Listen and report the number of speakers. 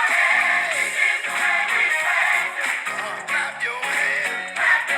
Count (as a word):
zero